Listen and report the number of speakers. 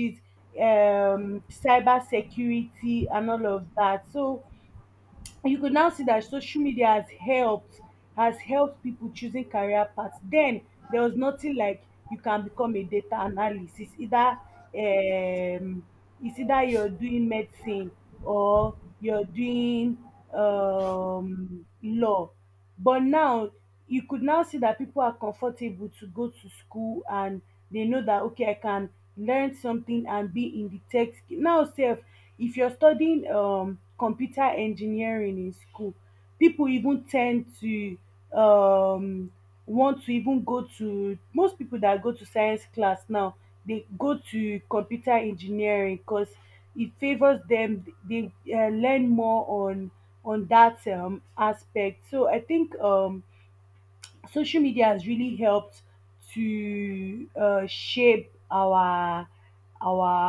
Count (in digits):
1